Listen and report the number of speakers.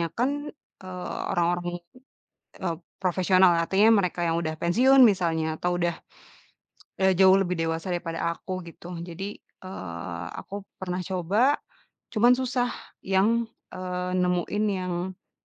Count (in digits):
1